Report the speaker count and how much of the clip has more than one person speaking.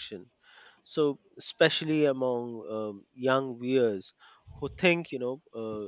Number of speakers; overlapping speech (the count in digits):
1, no overlap